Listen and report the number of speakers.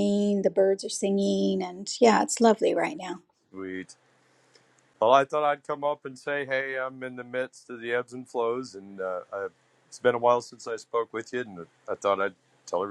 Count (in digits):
2